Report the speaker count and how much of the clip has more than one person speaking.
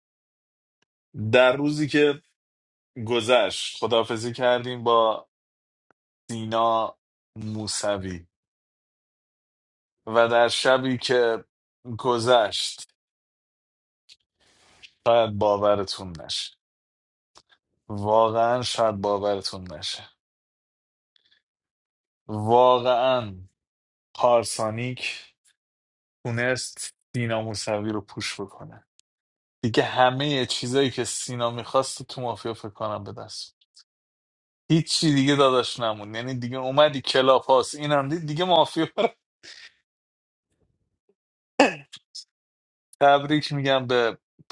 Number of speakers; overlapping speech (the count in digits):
1, no overlap